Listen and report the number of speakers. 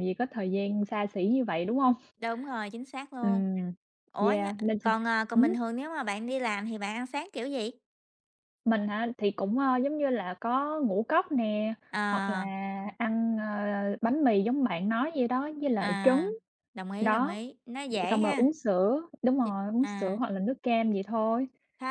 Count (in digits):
2